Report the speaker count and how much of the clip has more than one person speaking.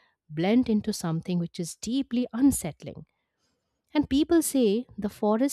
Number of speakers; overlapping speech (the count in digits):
1, no overlap